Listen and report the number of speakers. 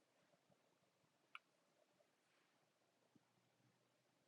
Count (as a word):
zero